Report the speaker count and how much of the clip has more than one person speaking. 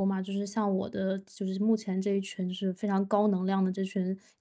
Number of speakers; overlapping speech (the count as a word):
one, no overlap